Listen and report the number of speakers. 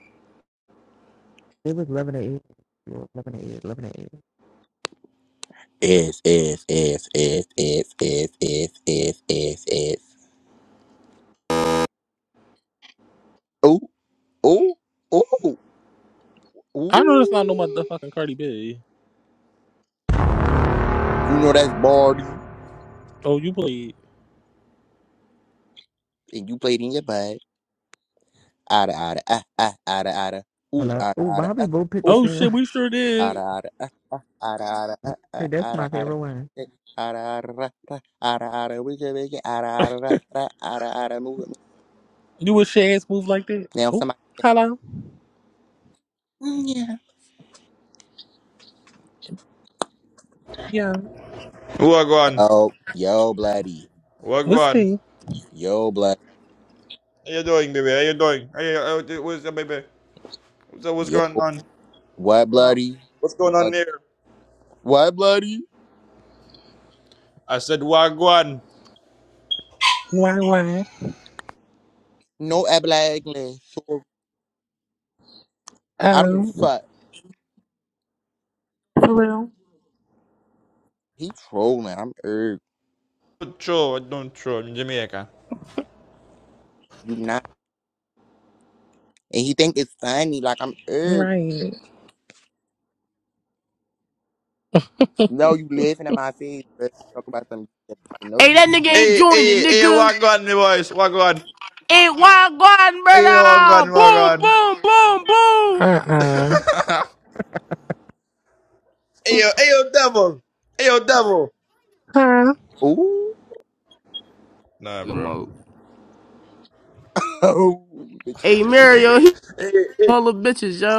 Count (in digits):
5